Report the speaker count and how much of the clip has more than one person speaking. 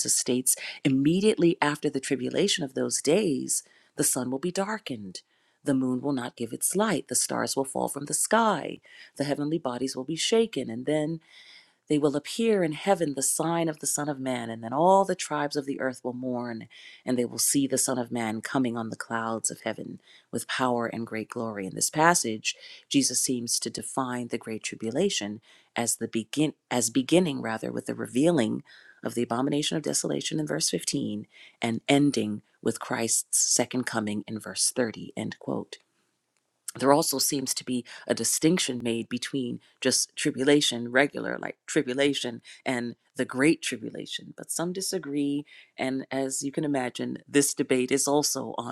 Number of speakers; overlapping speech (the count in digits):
1, no overlap